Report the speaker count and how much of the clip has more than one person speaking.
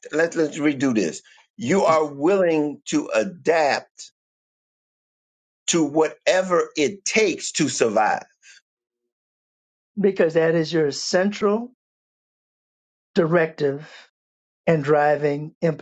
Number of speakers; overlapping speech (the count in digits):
2, no overlap